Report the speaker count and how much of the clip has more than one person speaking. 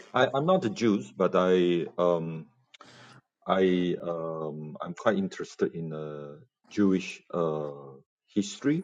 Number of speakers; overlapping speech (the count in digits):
1, no overlap